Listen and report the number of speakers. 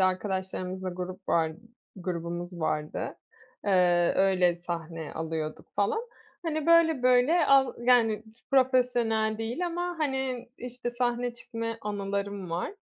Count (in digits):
1